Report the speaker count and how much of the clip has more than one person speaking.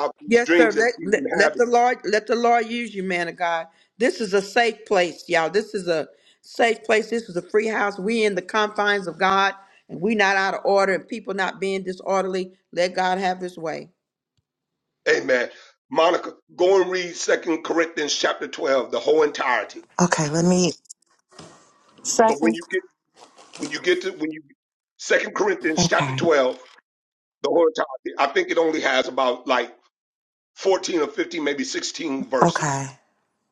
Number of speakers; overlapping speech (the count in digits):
3, about 7%